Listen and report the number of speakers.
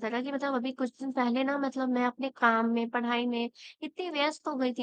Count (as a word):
one